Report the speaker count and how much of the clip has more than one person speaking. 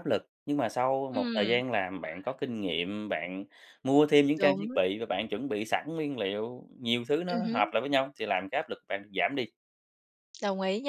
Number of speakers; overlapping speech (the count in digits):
2, about 11%